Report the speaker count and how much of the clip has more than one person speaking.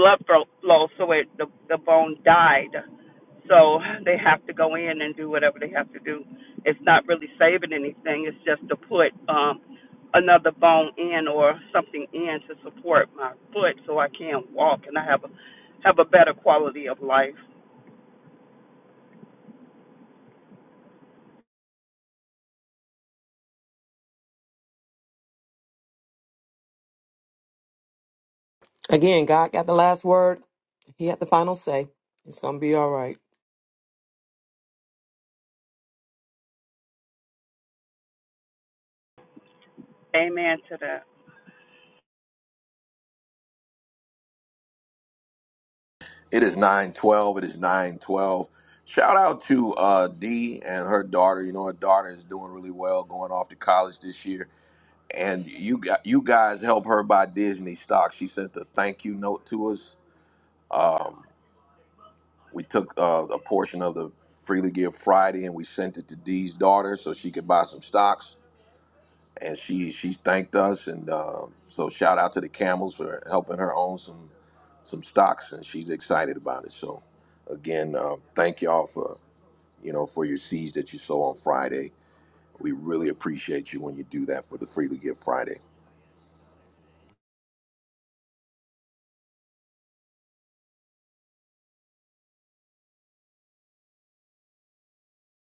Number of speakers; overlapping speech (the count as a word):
three, no overlap